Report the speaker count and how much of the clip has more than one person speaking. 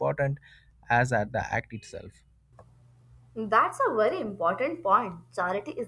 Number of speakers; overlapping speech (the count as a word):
two, no overlap